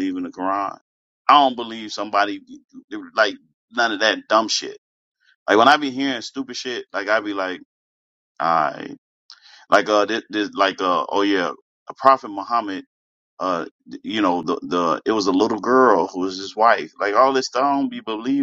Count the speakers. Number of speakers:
1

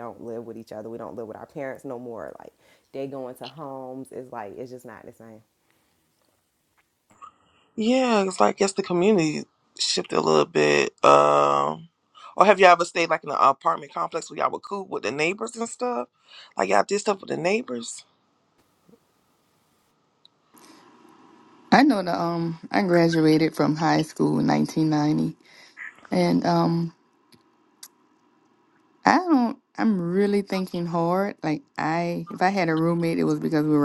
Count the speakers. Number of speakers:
3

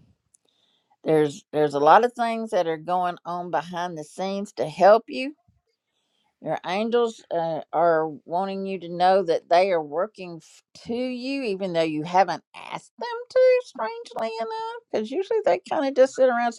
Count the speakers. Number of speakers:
1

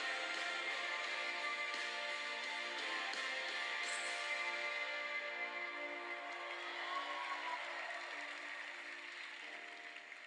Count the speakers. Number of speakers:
0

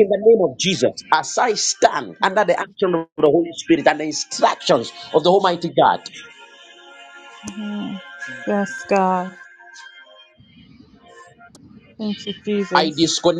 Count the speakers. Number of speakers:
2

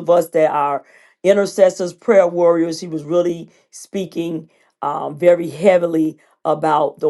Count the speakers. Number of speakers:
1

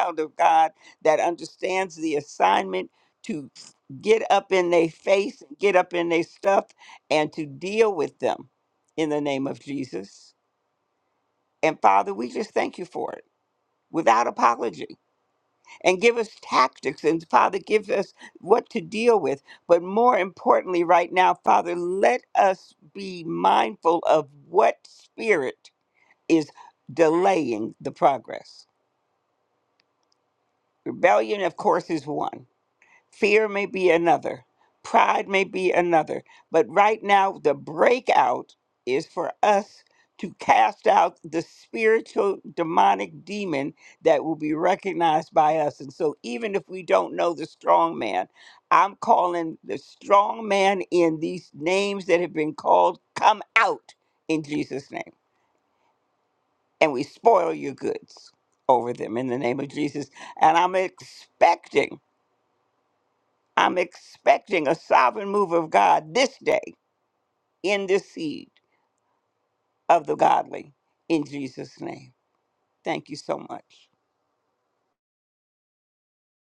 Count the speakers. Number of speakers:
1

